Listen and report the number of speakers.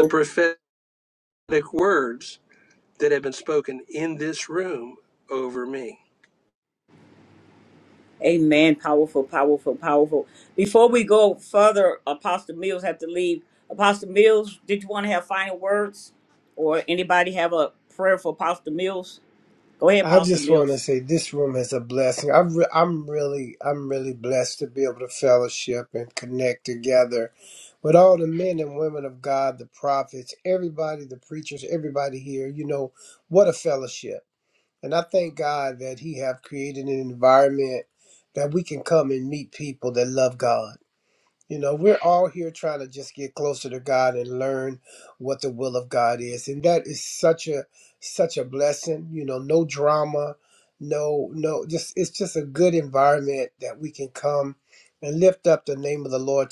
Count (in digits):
3